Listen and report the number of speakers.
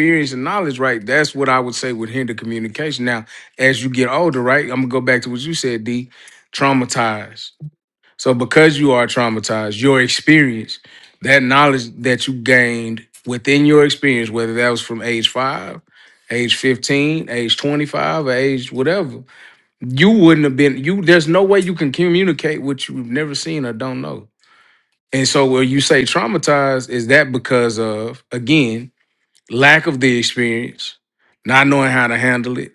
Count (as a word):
one